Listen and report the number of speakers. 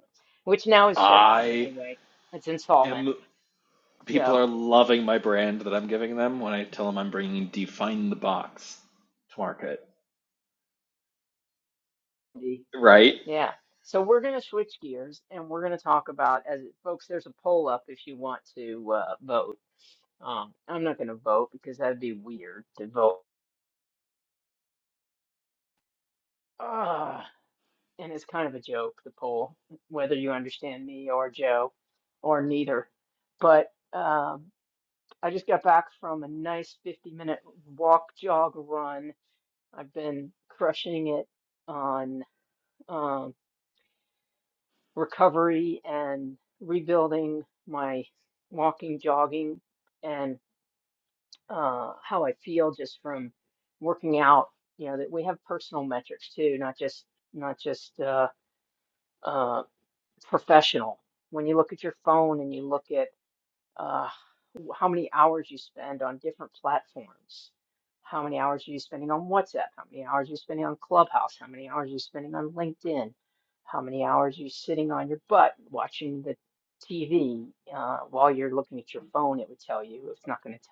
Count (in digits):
2